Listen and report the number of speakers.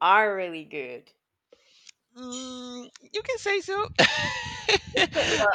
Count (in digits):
2